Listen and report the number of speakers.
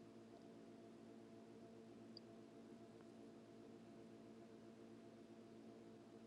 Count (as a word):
zero